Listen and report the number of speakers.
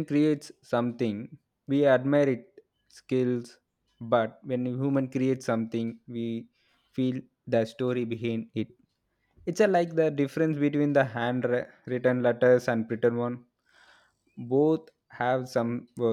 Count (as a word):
one